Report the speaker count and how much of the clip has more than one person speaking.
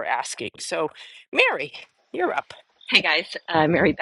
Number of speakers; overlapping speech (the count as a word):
two, no overlap